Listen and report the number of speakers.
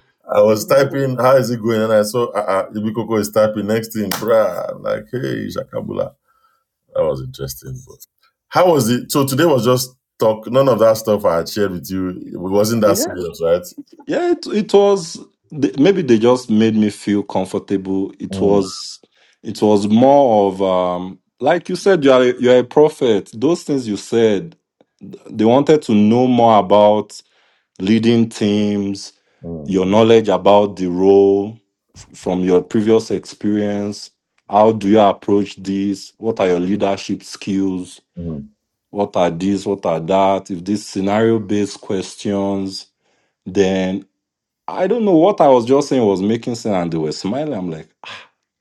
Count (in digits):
2